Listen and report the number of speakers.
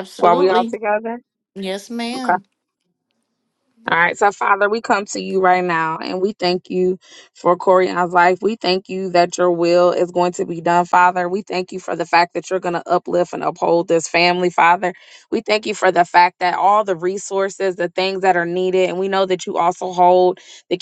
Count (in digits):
2